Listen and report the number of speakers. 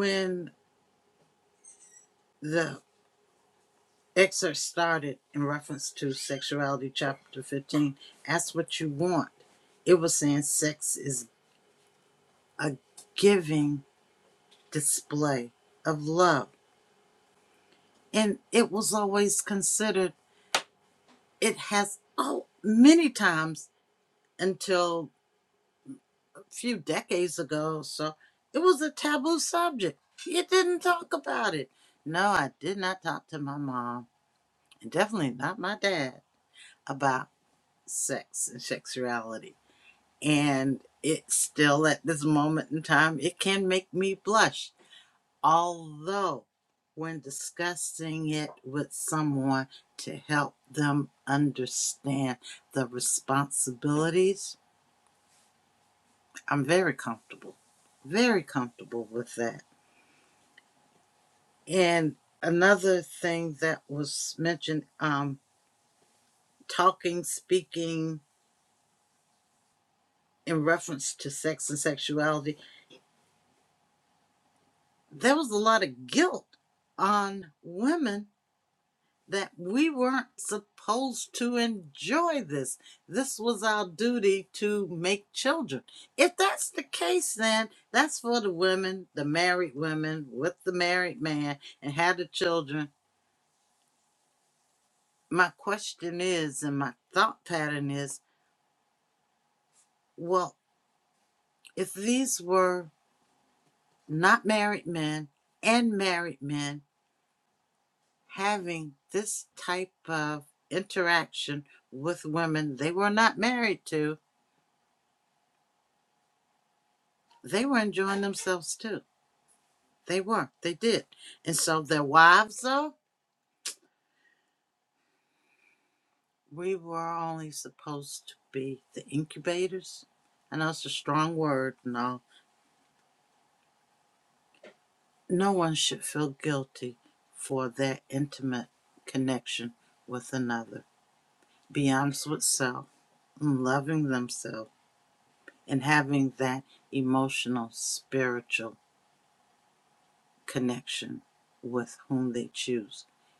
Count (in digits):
1